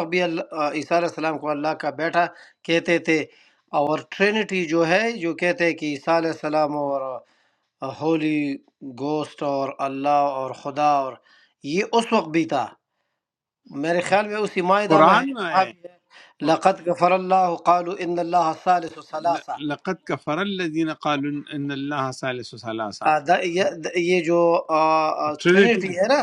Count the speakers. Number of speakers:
2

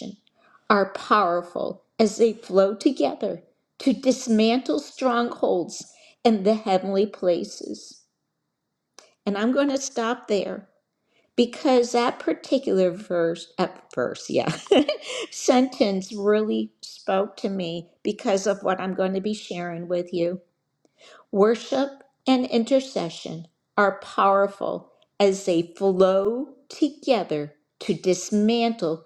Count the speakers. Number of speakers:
1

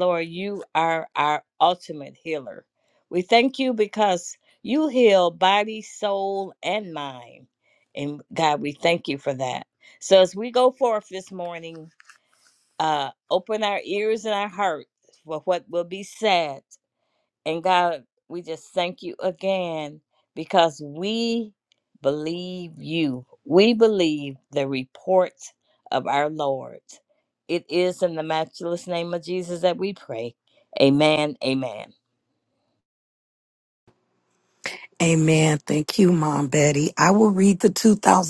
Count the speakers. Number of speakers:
2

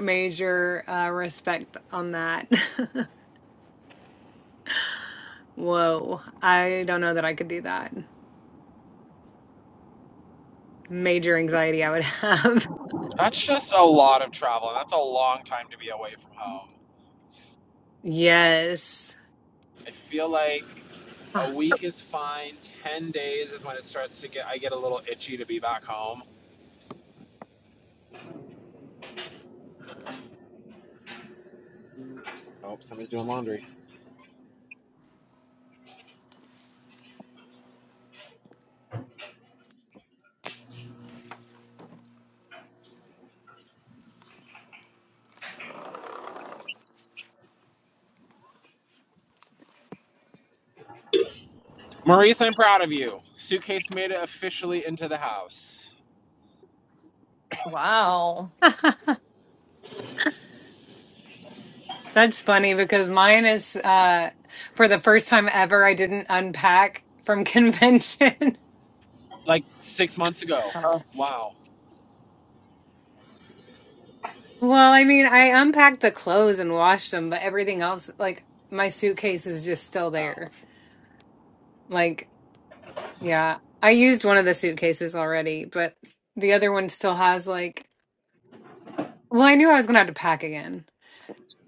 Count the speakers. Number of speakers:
3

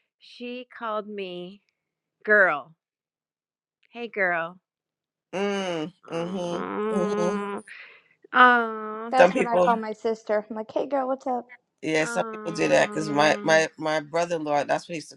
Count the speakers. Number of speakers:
3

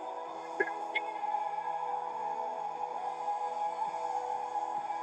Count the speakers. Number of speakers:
0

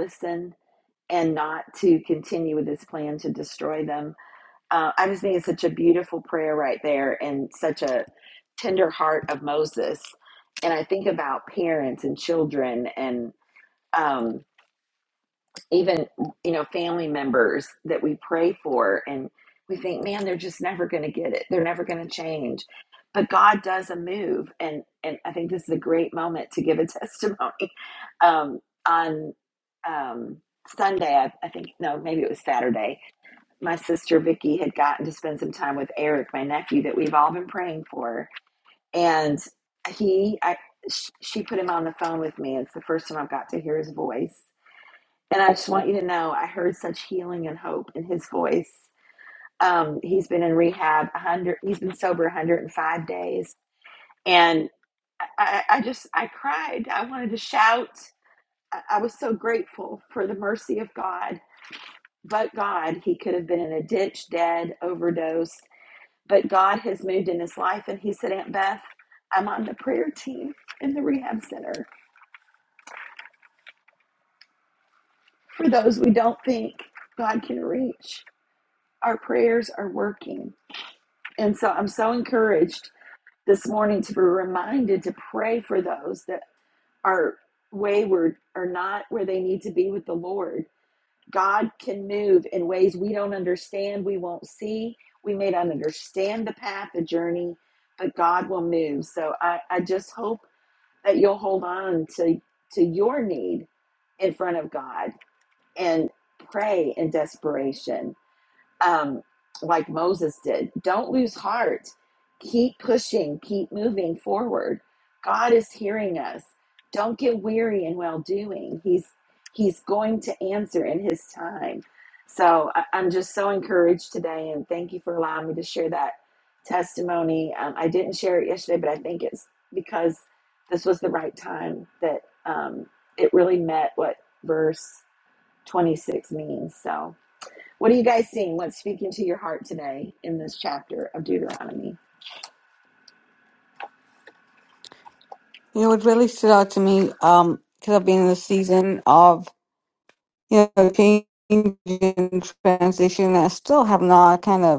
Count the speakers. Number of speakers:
2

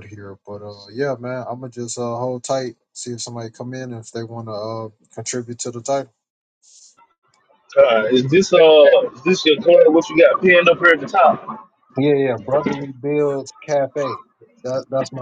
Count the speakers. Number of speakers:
2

